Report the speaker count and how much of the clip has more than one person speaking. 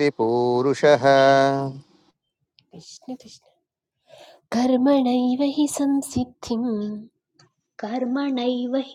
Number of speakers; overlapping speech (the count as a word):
three, no overlap